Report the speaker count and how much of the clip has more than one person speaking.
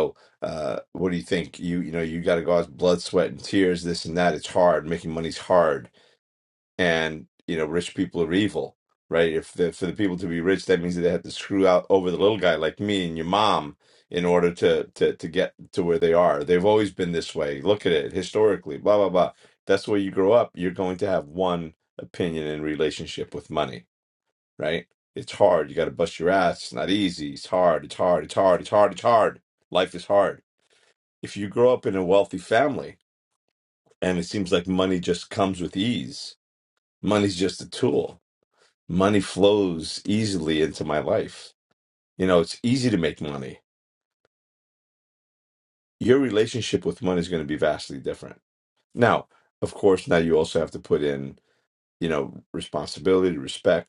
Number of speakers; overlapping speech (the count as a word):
one, no overlap